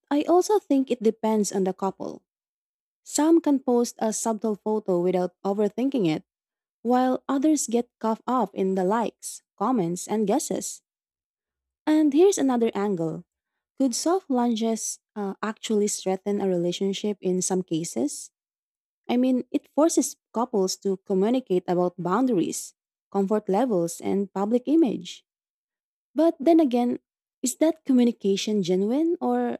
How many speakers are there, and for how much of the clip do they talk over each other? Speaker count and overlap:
1, no overlap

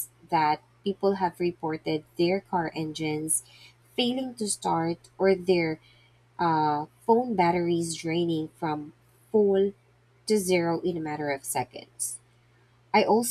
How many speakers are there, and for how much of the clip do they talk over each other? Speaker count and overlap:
1, no overlap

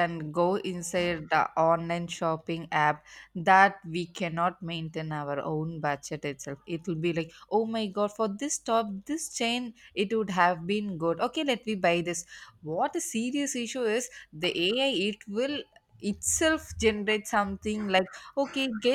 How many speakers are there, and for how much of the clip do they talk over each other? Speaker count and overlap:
1, no overlap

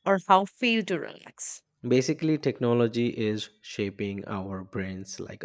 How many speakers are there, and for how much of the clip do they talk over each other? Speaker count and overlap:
2, no overlap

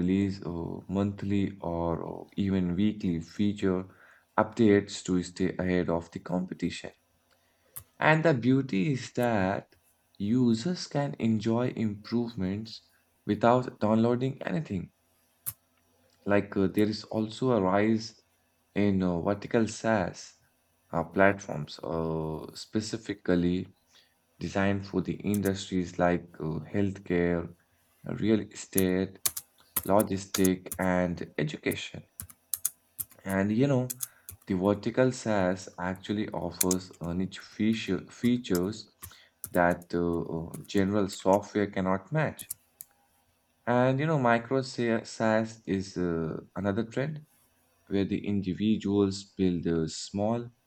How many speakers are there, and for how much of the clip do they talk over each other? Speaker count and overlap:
1, no overlap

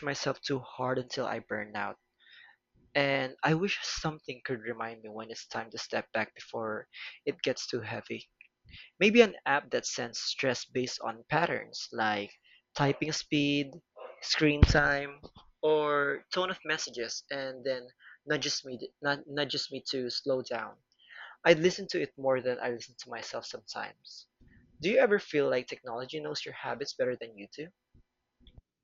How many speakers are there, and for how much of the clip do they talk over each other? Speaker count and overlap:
1, no overlap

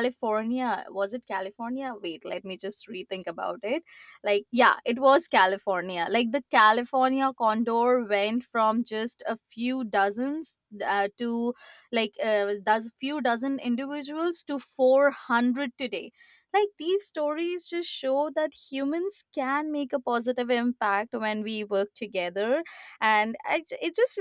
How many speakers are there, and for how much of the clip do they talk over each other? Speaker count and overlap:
1, no overlap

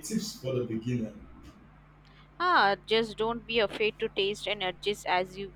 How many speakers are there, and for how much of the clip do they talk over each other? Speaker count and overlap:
2, no overlap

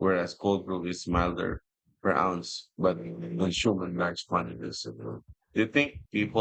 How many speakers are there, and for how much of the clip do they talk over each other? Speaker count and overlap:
1, no overlap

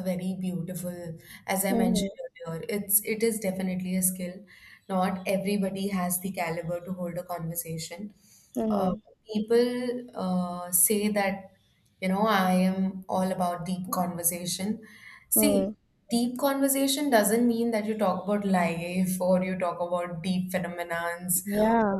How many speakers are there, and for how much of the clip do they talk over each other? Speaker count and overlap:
2, about 4%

